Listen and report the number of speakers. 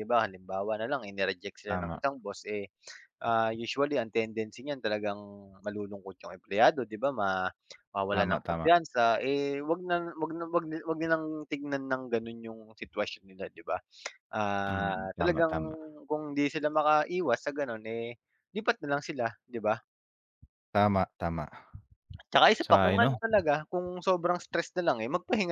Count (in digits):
2